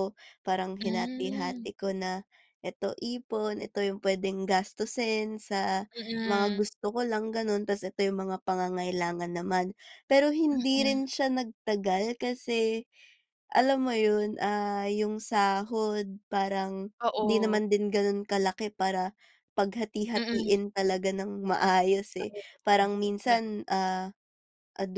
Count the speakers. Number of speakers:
two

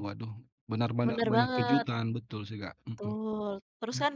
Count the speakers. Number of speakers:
two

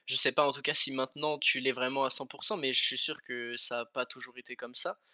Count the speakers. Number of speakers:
one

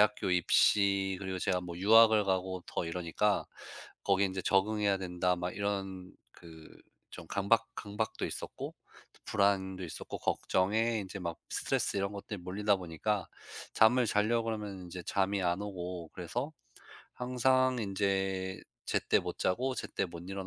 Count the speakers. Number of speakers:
one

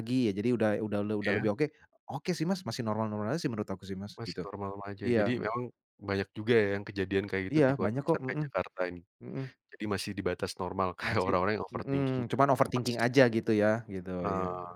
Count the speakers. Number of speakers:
two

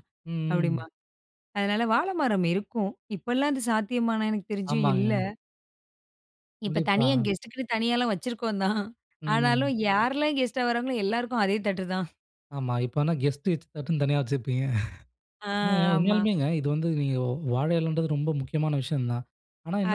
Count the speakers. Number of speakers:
two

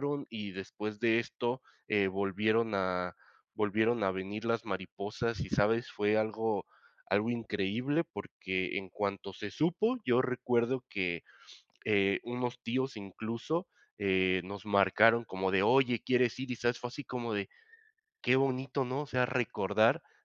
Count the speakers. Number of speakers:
one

